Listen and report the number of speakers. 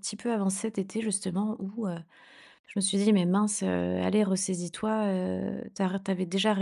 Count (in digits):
1